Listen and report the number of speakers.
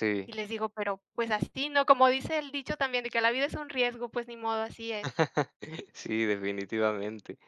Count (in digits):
2